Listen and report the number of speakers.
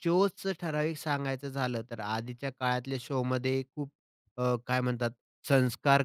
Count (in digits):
1